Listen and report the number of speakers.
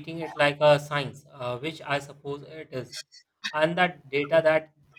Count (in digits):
1